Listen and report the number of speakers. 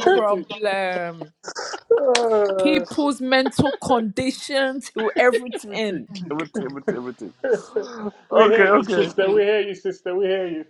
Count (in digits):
3